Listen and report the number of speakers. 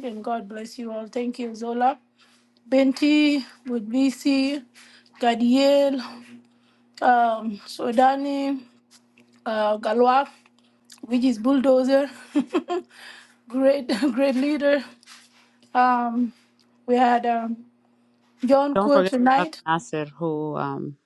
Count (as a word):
two